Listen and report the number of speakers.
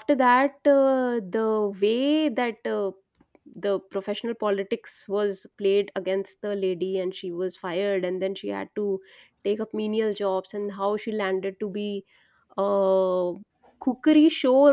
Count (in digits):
1